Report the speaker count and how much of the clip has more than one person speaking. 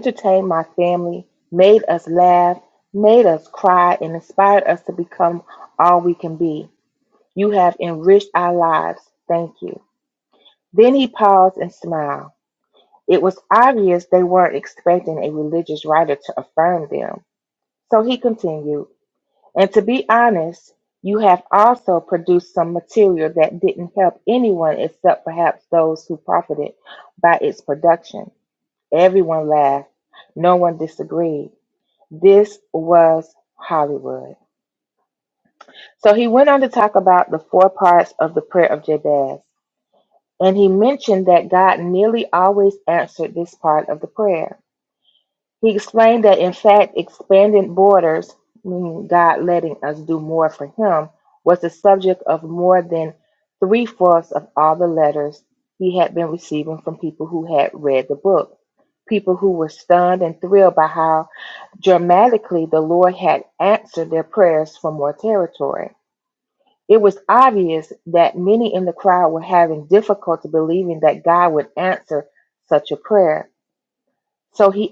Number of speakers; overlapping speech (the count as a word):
one, no overlap